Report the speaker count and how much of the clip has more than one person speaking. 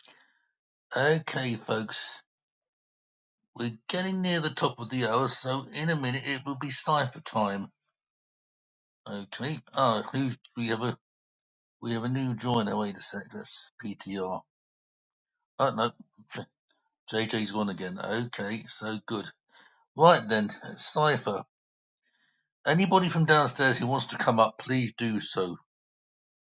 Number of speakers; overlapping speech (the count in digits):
1, no overlap